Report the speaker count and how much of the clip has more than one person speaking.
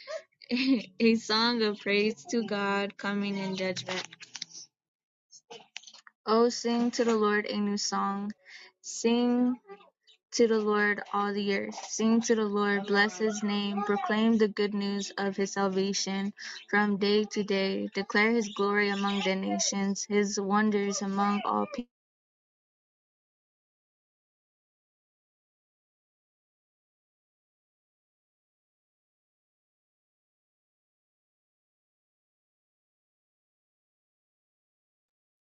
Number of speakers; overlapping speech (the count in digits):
1, no overlap